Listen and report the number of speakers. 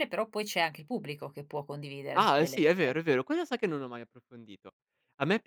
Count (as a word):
two